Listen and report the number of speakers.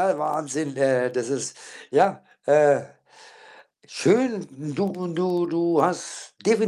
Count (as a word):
one